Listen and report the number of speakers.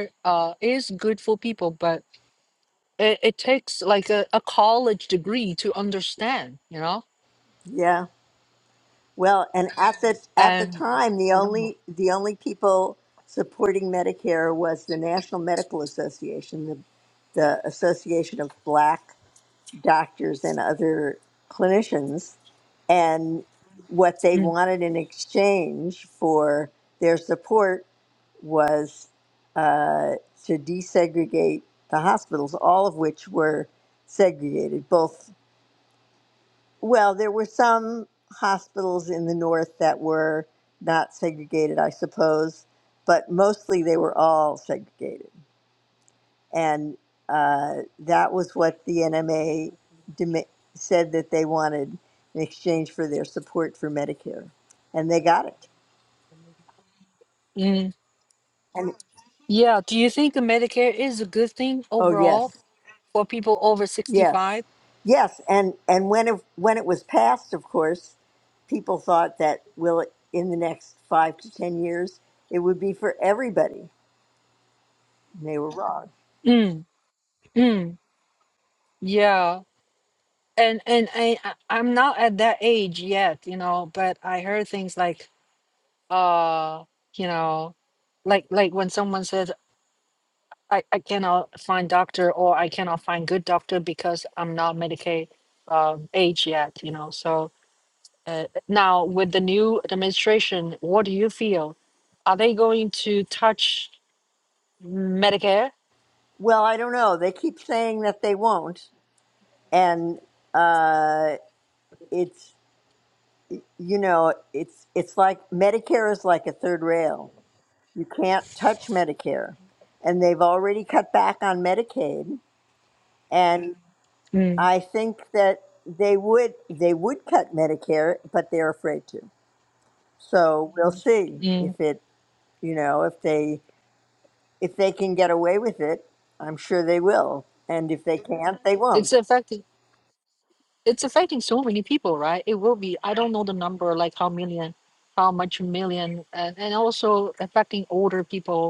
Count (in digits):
2